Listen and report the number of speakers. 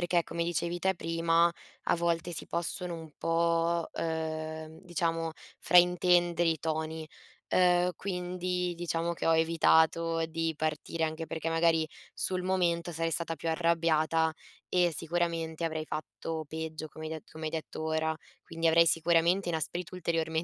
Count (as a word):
one